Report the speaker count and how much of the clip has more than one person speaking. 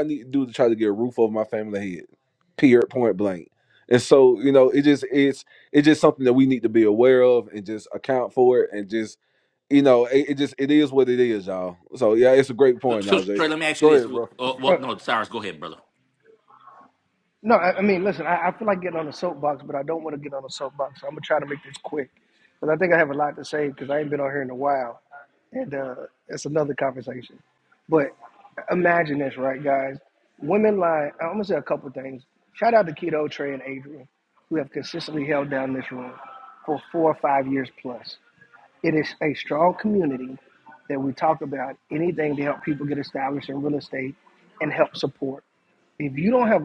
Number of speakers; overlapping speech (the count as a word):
three, about 2%